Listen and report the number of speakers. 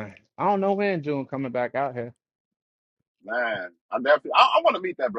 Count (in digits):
2